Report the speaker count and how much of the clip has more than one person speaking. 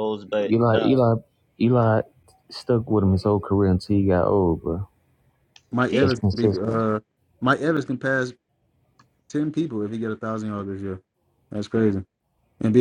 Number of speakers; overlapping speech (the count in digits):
3, about 11%